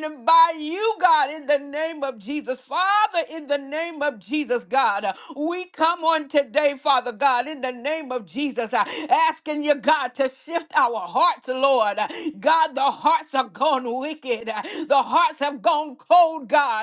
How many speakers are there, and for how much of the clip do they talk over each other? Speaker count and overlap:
1, no overlap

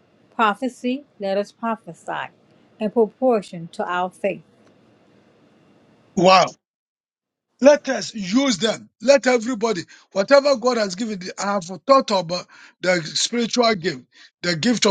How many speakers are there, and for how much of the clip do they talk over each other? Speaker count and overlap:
2, no overlap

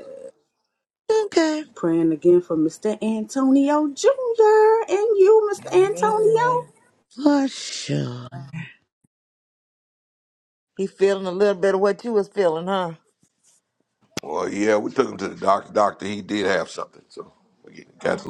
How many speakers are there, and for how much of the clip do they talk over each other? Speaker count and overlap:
4, about 5%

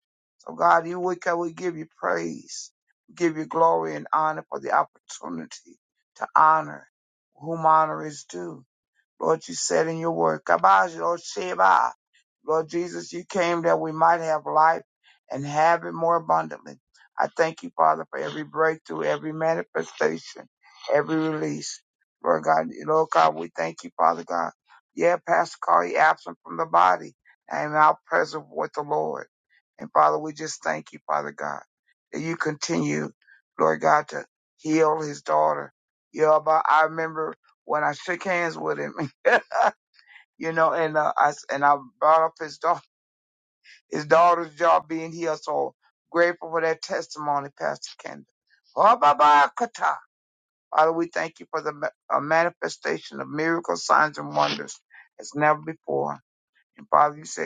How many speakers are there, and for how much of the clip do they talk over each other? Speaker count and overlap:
1, no overlap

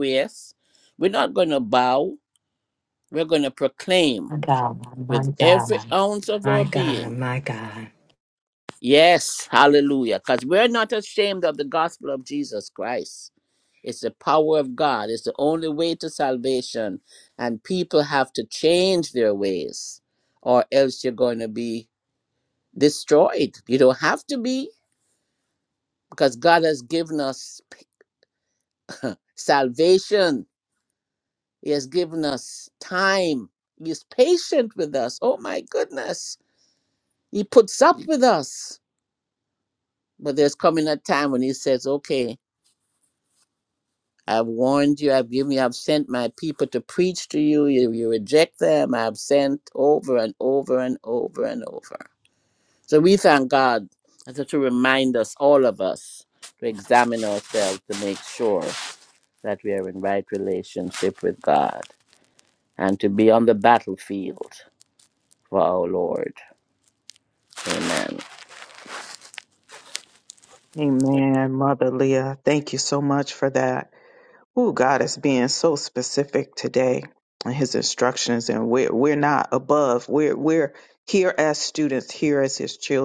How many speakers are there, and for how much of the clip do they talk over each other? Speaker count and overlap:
3, about 2%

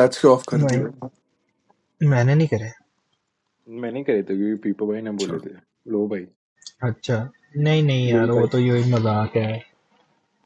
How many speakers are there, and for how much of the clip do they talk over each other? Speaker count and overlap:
3, about 8%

